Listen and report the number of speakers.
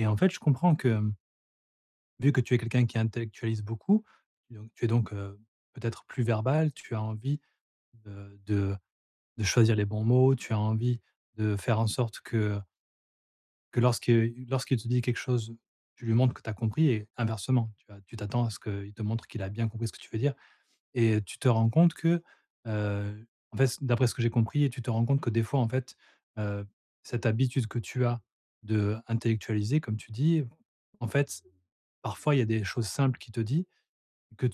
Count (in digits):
1